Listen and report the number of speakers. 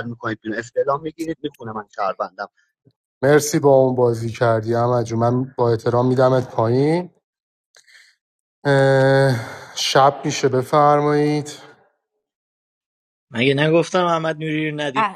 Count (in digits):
3